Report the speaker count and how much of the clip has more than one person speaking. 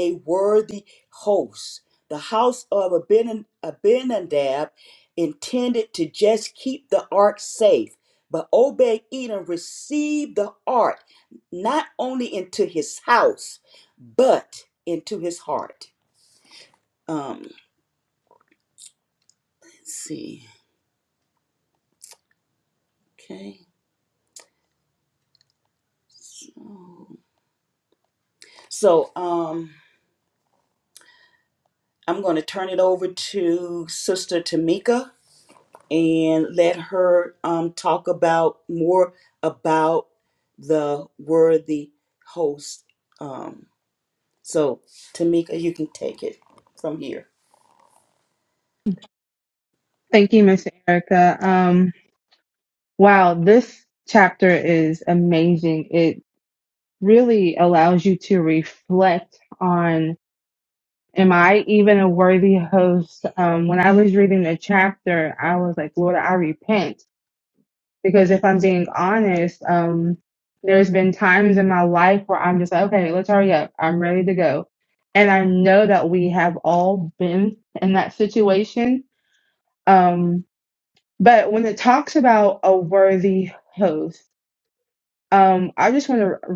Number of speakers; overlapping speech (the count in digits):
2, no overlap